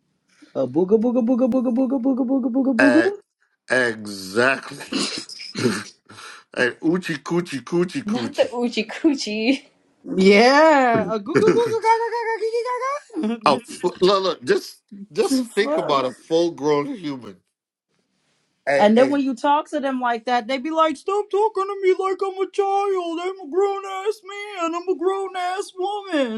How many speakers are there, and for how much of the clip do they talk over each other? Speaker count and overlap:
three, about 9%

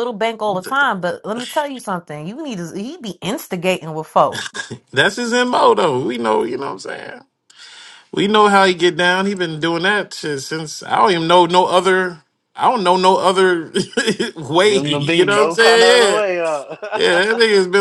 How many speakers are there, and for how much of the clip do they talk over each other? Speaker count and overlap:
three, about 11%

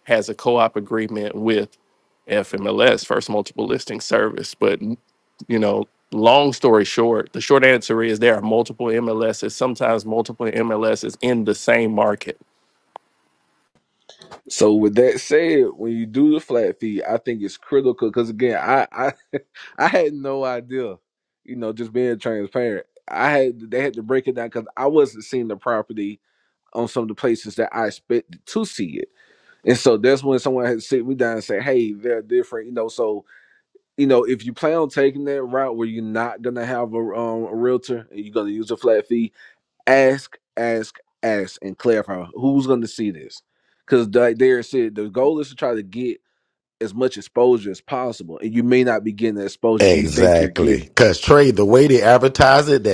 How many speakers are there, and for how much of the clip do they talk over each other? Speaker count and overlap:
three, about 2%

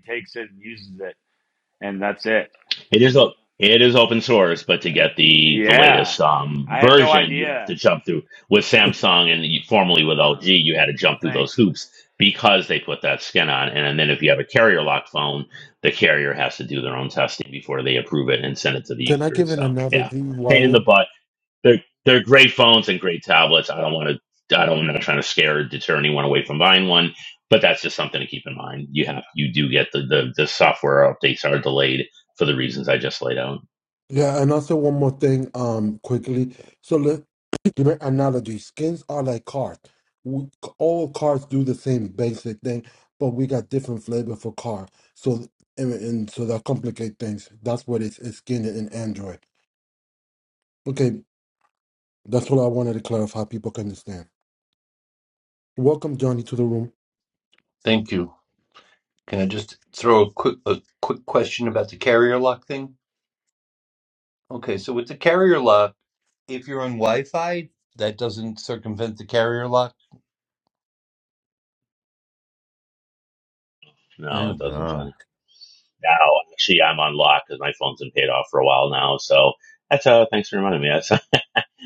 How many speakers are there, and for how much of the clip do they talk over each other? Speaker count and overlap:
four, about 6%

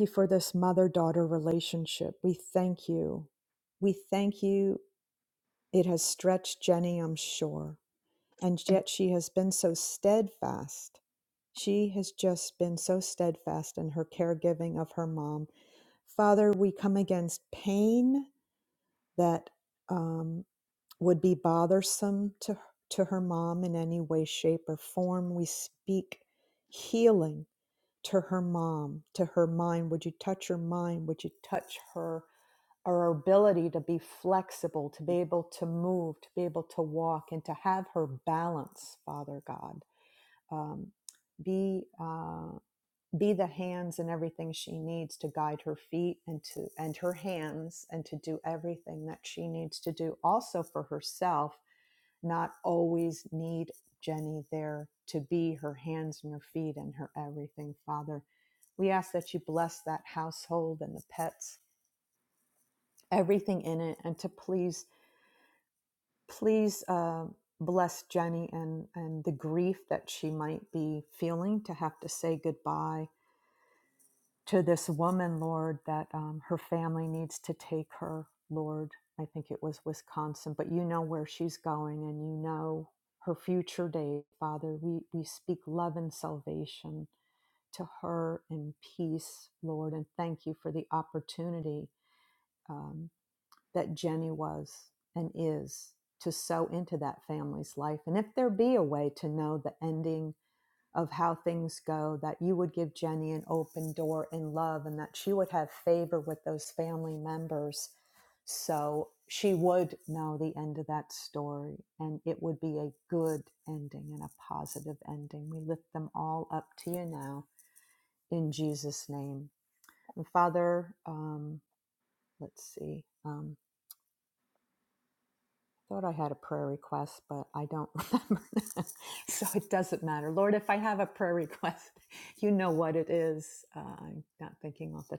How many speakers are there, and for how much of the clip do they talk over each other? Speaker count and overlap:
one, no overlap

